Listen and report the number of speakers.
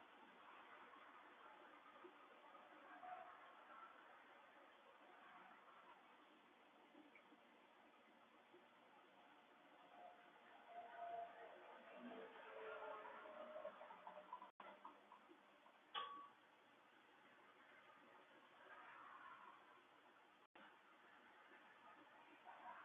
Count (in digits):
0